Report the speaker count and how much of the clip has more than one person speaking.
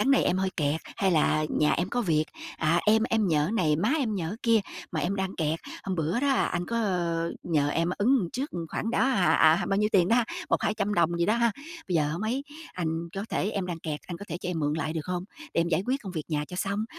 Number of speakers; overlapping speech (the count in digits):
1, no overlap